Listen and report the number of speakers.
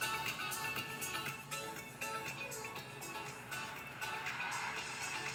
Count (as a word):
zero